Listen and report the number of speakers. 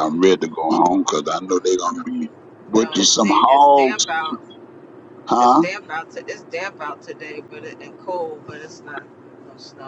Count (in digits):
2